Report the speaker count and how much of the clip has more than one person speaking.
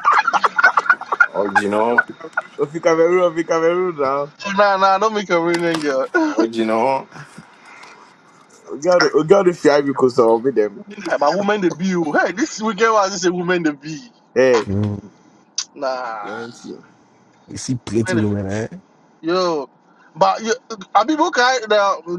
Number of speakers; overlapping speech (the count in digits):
4, about 3%